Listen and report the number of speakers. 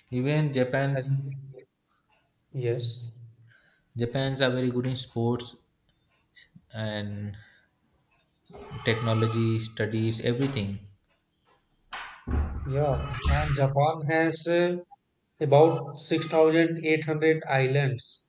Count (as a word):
two